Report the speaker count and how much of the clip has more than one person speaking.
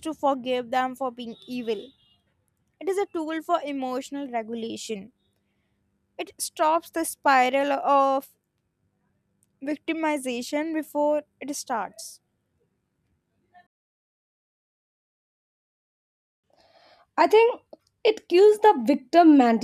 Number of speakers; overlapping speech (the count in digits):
2, no overlap